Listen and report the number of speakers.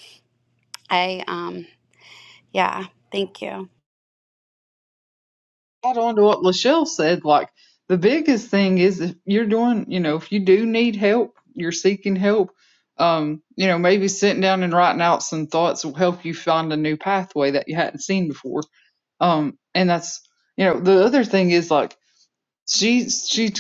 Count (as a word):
two